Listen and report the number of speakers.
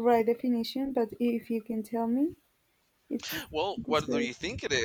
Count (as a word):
two